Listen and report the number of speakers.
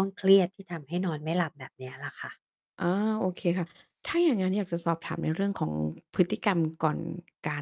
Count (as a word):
two